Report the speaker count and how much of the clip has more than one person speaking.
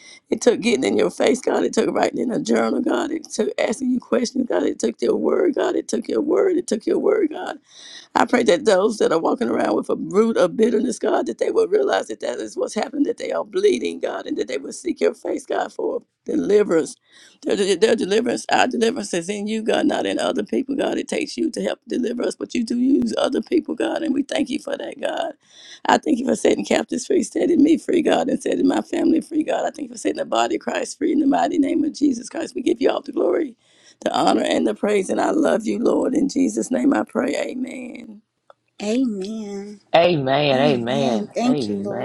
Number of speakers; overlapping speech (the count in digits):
3, about 4%